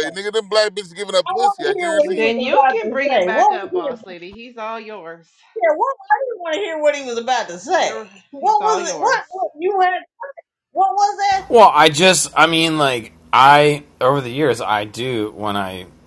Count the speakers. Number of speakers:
four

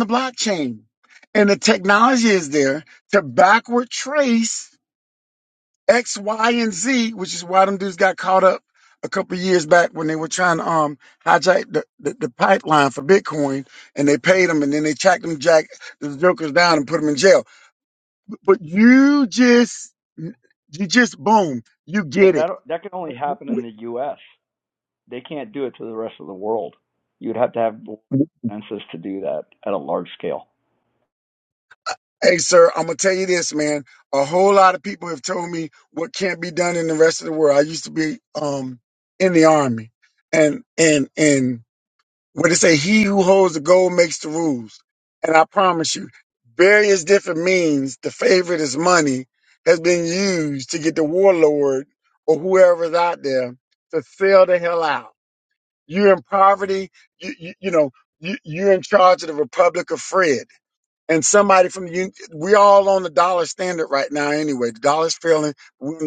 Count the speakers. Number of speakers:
two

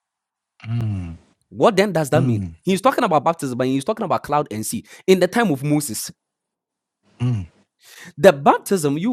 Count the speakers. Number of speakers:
two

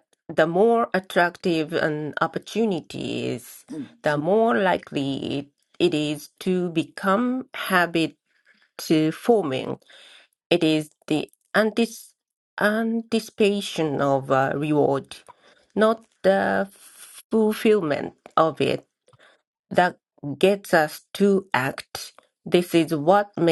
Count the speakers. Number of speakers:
one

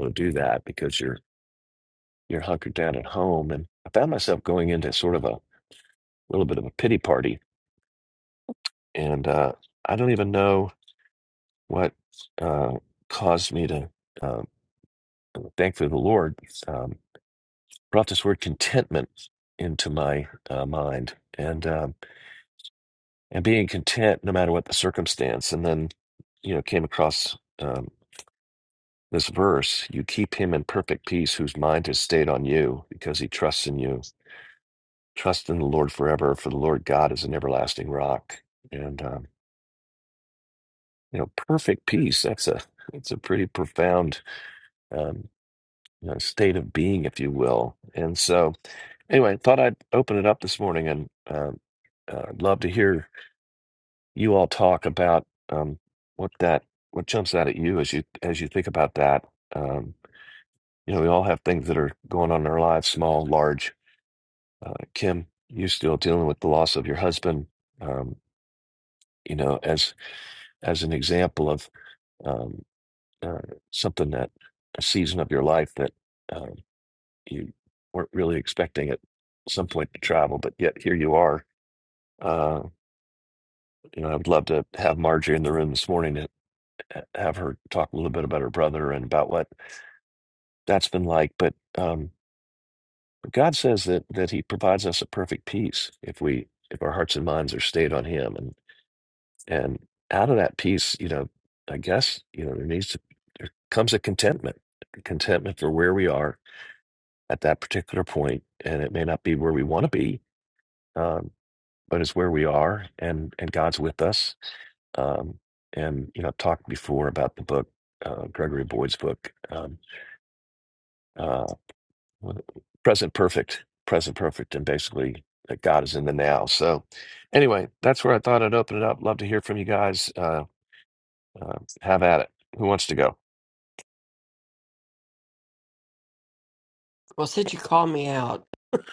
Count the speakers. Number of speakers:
two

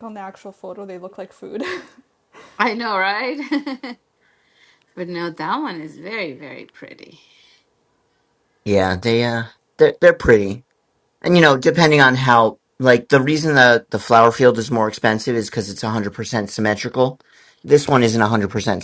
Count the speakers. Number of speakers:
three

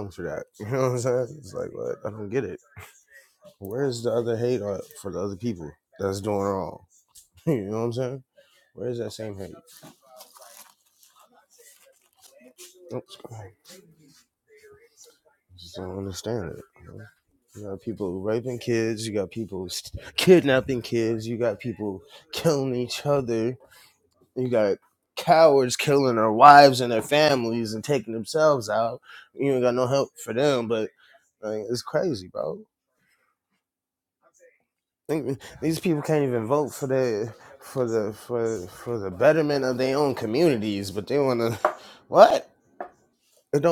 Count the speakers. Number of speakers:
one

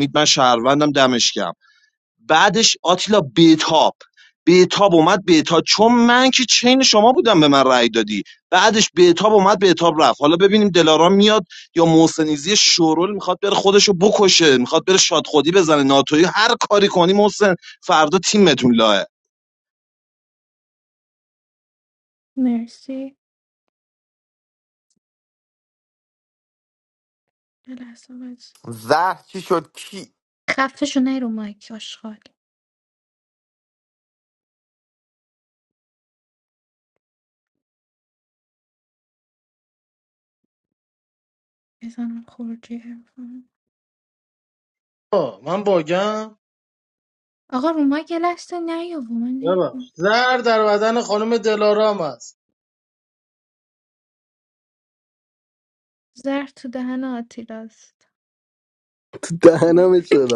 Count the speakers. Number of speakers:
five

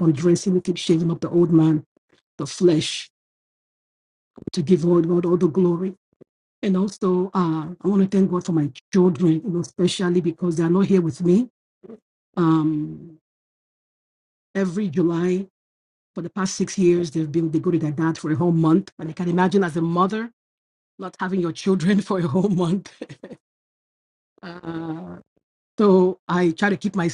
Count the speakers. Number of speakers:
one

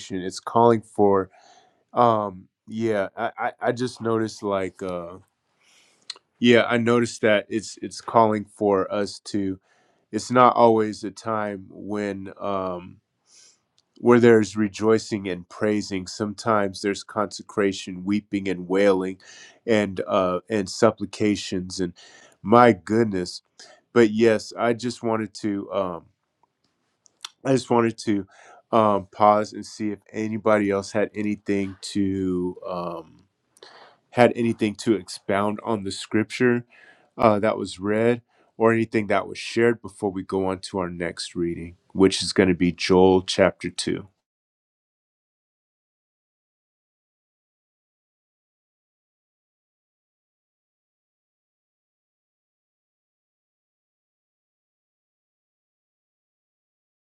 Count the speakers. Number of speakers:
one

